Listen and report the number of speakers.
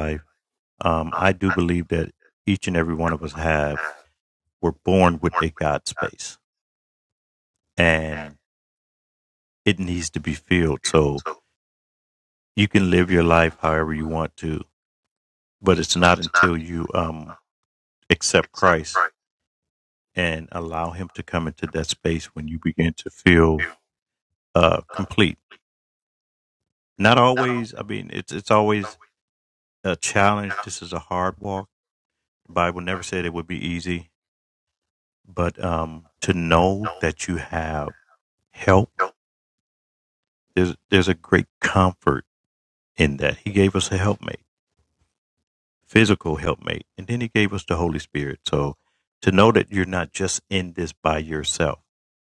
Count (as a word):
one